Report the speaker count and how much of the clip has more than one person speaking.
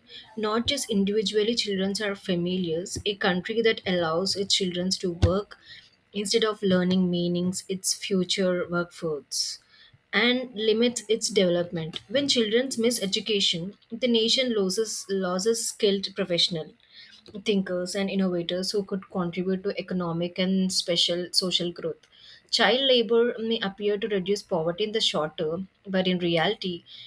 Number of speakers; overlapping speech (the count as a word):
one, no overlap